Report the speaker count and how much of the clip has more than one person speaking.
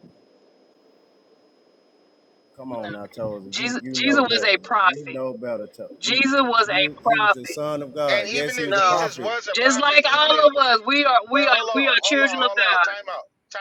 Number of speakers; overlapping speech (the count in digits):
3, about 48%